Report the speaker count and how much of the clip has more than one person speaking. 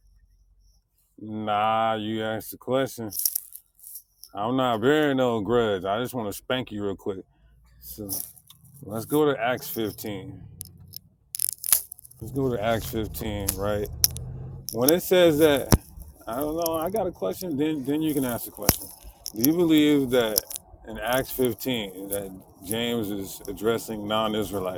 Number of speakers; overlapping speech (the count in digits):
1, no overlap